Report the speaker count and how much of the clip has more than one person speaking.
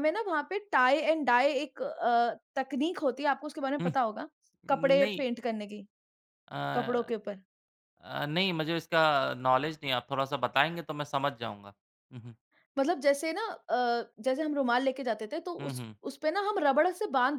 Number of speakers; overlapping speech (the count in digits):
2, about 5%